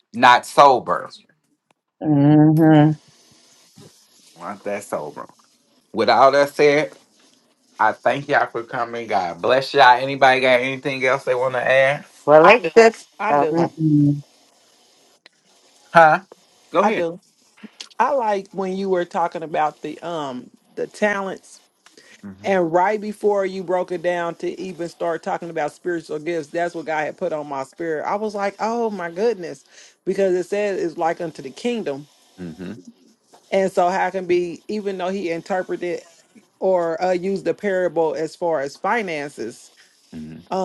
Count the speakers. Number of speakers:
four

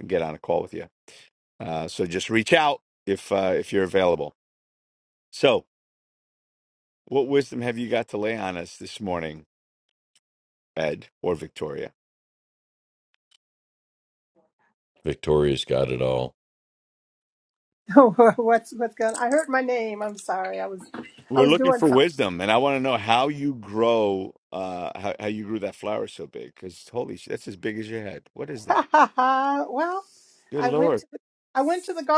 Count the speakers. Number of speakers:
three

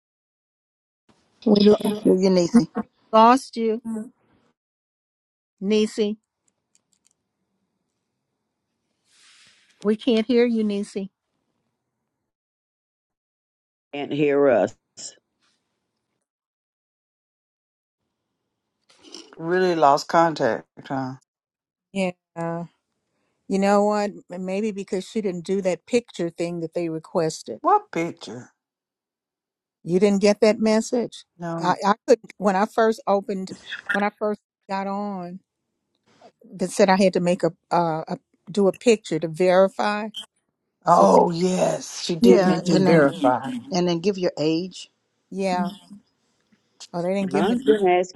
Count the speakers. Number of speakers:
four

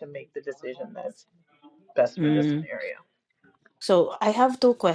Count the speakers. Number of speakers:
two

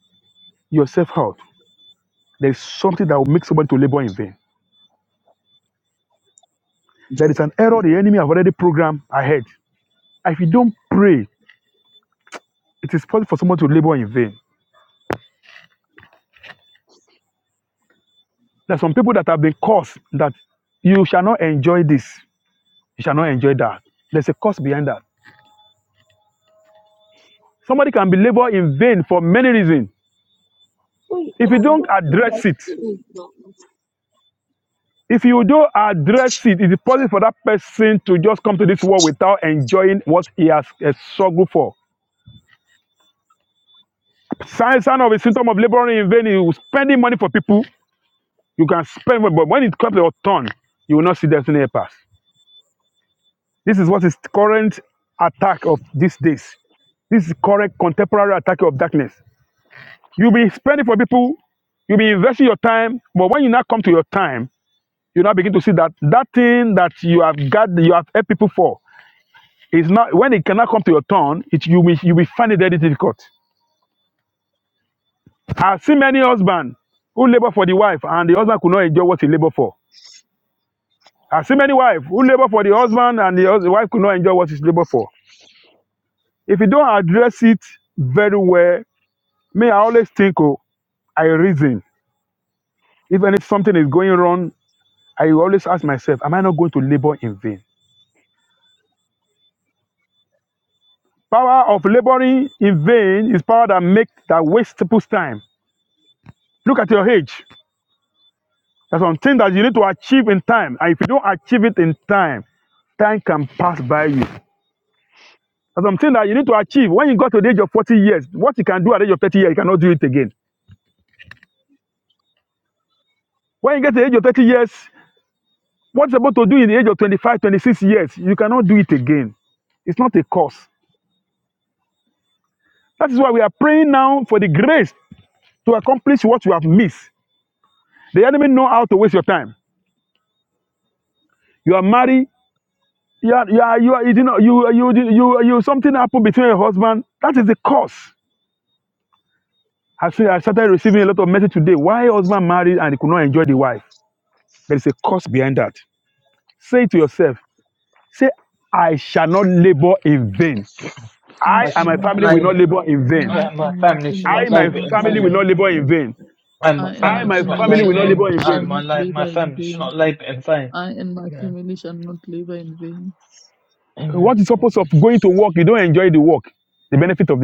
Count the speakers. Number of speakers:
four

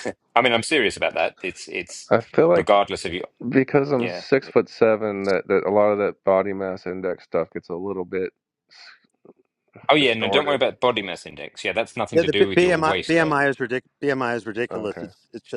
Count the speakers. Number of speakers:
three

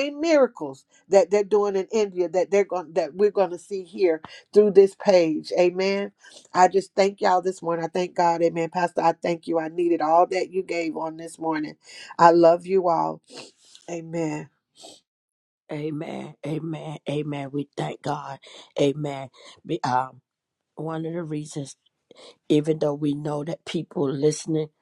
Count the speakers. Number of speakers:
two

